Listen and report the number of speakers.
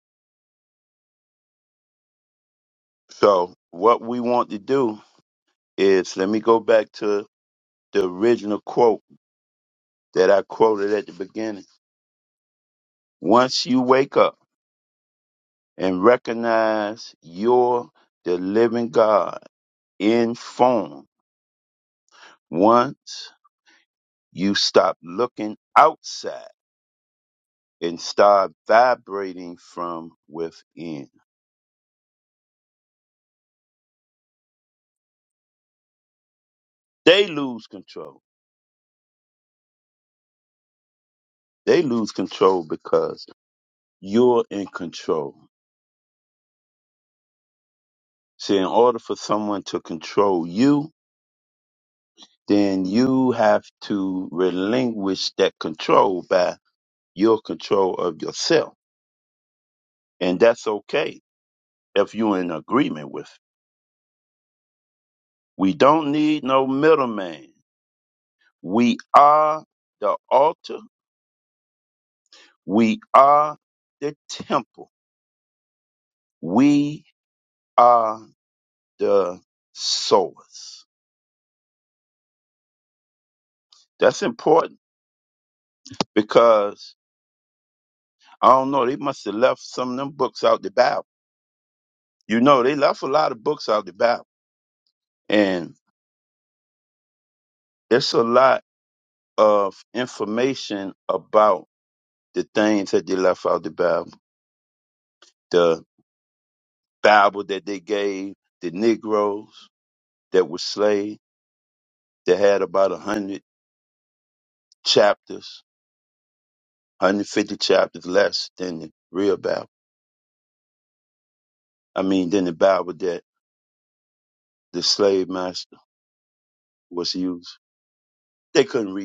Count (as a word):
one